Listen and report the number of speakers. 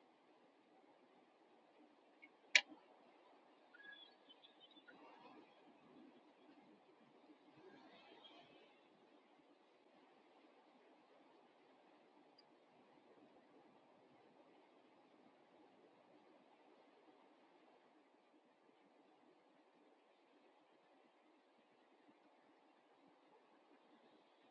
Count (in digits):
0